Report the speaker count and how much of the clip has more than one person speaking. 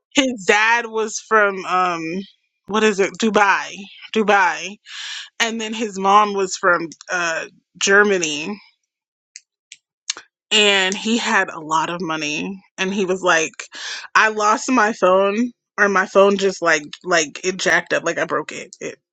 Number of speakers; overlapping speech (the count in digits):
1, no overlap